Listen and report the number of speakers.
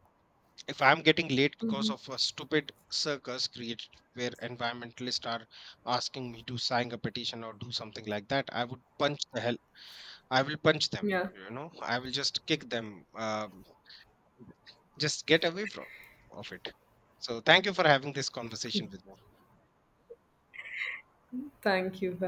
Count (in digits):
2